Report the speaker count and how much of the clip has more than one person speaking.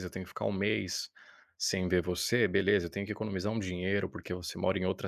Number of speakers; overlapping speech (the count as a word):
one, no overlap